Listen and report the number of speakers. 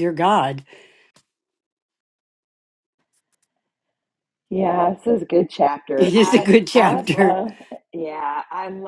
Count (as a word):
two